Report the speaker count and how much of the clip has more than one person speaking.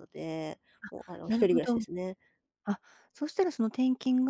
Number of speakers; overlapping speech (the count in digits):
2, about 22%